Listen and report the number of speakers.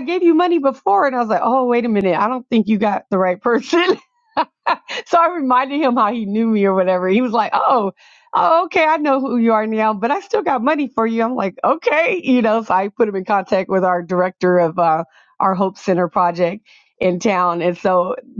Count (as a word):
one